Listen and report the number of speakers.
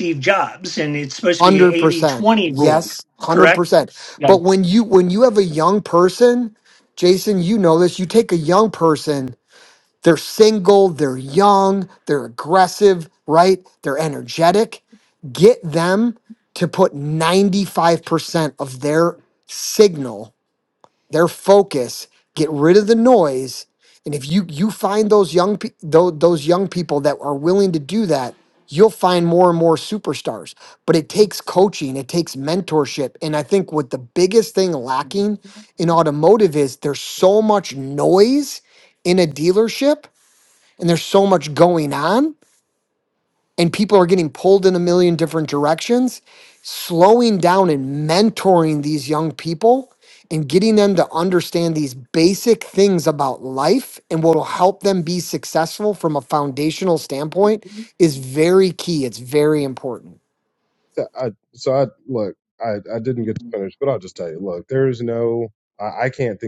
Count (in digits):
3